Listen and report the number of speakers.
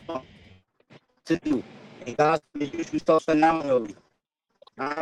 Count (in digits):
1